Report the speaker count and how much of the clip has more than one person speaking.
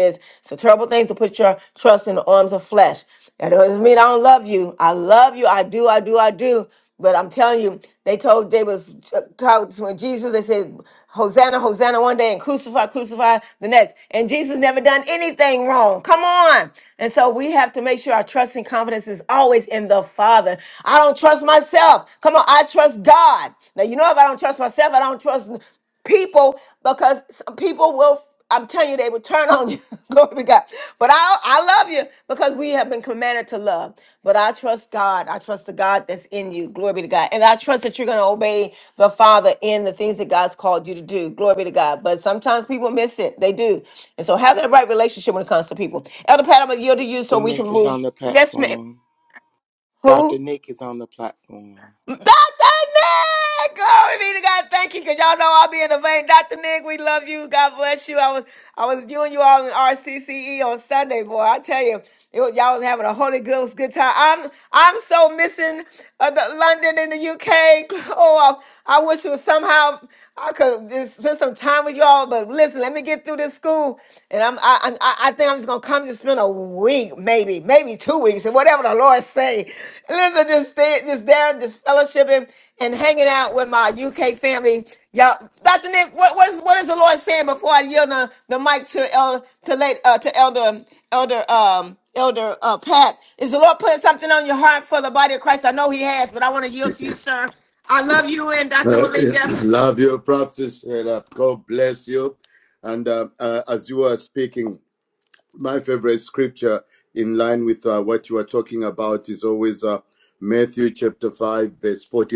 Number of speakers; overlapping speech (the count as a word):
three, about 1%